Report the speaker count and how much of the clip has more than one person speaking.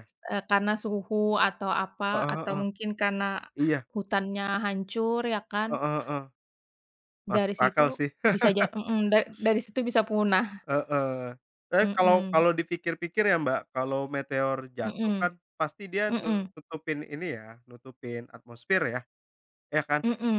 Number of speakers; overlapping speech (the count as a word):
two, about 12%